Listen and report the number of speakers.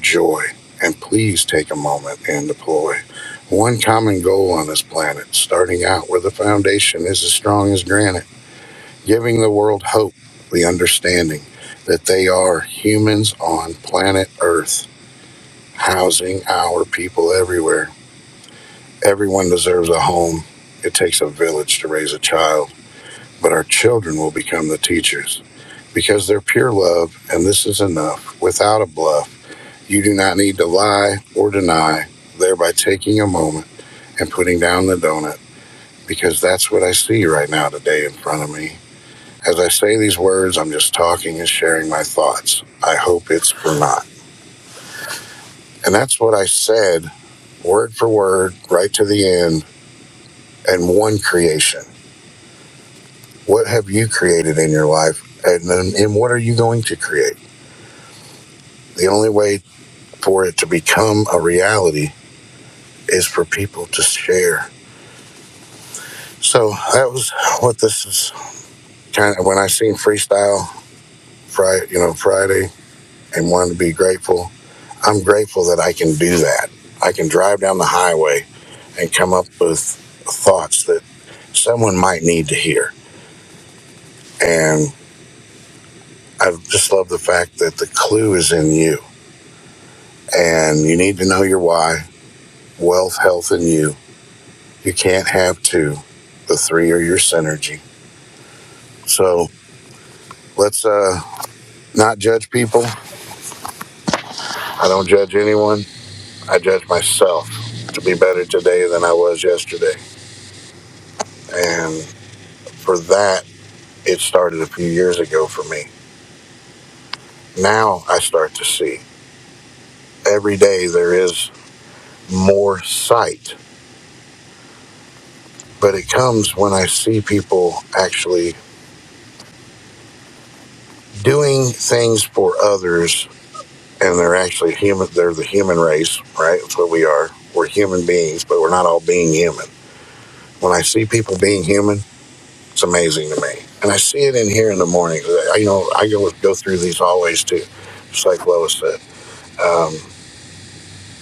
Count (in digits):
1